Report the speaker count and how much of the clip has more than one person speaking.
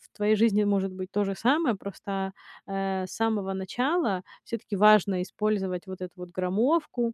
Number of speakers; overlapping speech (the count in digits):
1, no overlap